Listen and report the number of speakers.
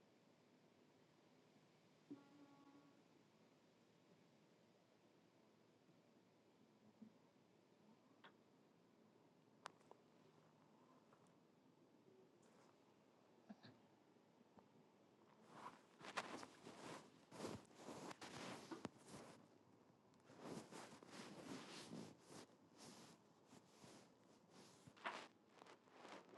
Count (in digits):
0